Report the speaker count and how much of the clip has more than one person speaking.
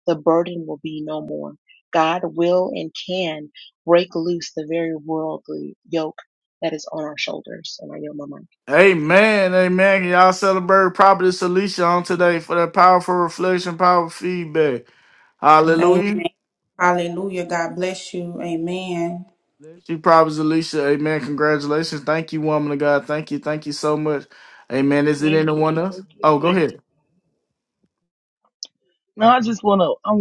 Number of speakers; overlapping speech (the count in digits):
4, about 4%